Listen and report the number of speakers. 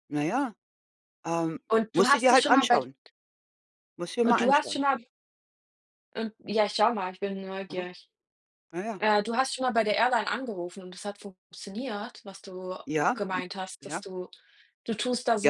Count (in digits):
2